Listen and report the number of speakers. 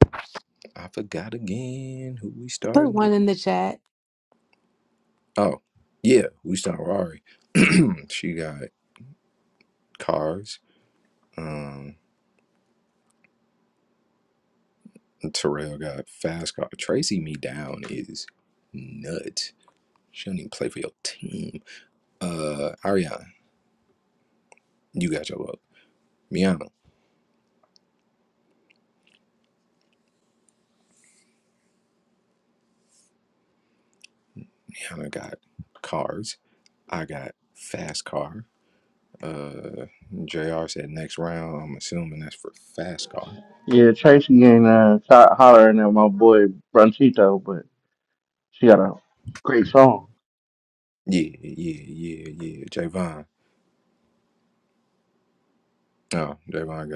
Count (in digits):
3